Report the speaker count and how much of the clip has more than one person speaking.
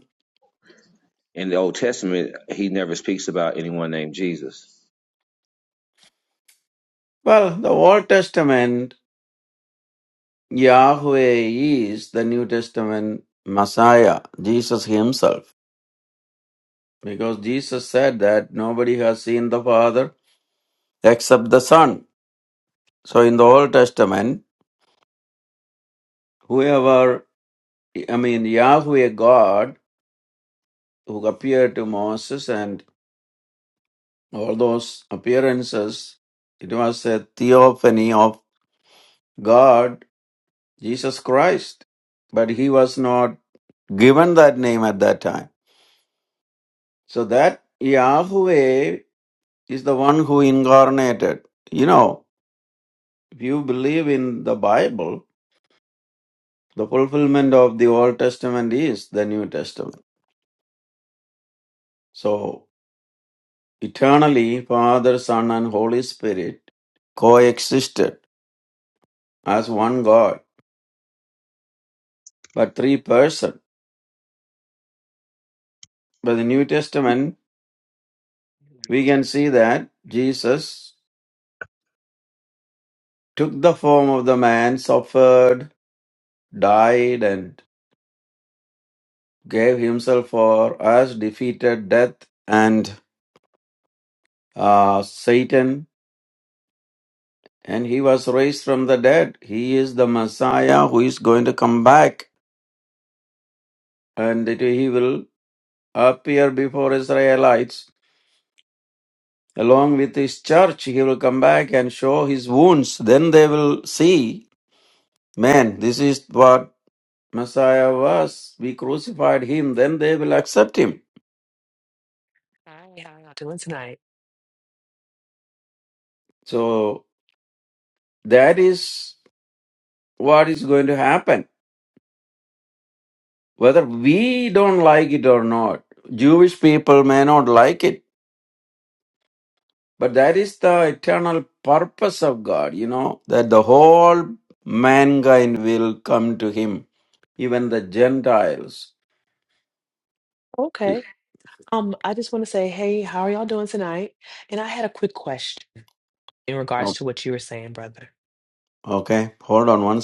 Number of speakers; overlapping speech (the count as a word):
three, under 1%